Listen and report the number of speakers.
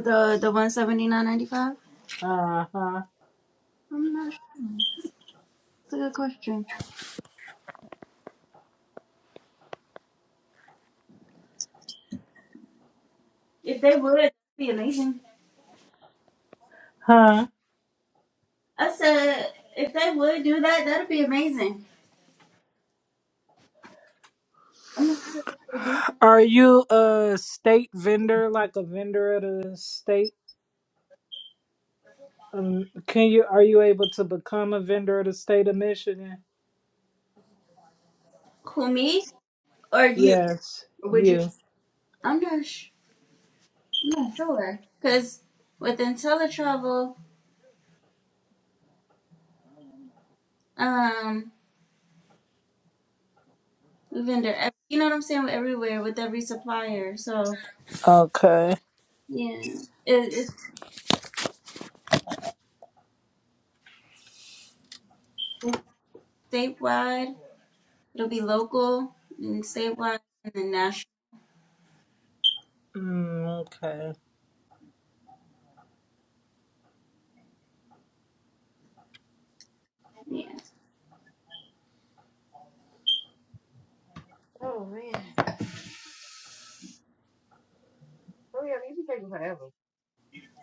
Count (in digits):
3